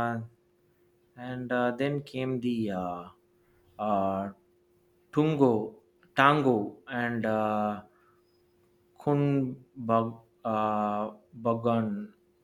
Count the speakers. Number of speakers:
1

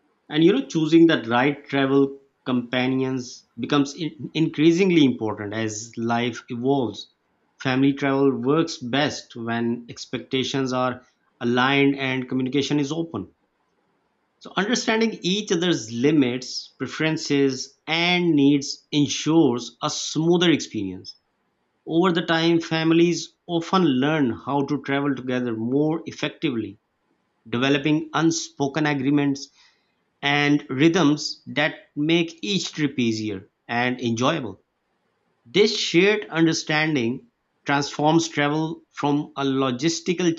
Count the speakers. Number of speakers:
1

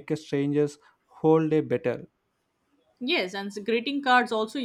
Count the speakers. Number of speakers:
2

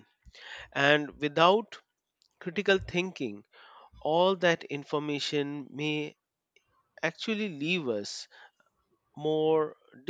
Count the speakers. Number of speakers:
1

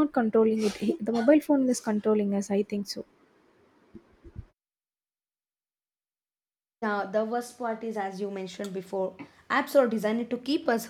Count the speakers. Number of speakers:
2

